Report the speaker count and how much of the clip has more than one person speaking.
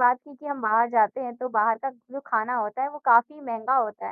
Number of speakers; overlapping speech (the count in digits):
1, no overlap